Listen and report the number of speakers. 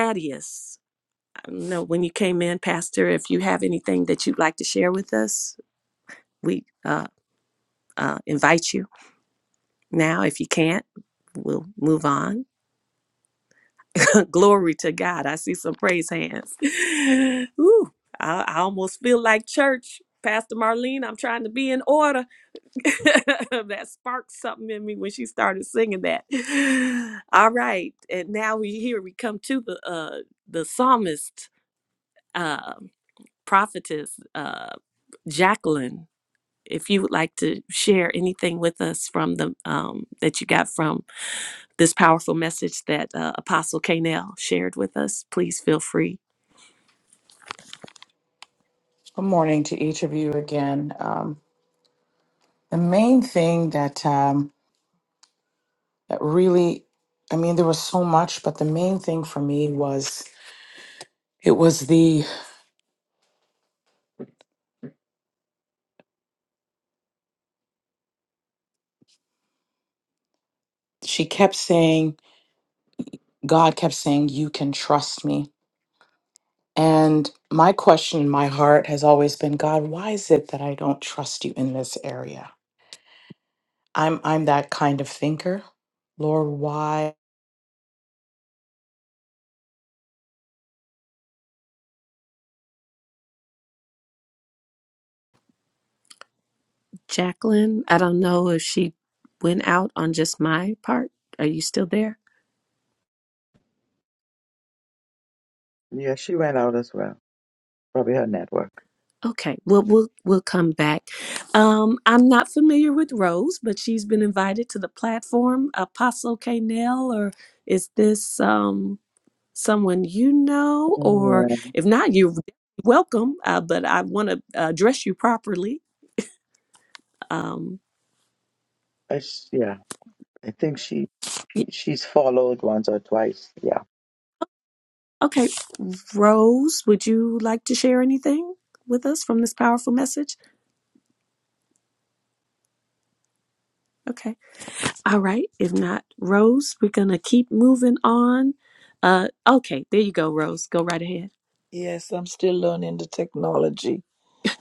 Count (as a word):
four